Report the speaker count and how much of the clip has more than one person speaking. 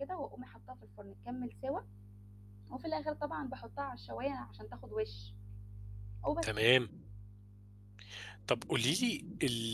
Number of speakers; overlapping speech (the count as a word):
two, about 3%